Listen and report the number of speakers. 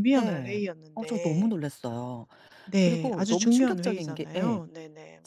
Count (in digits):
2